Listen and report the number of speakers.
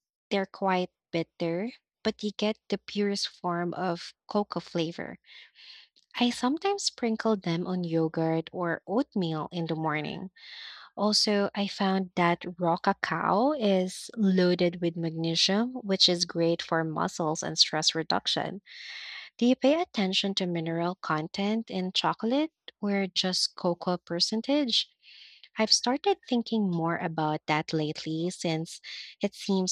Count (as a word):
one